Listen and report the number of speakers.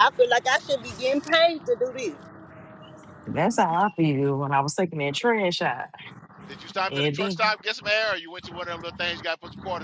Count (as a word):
three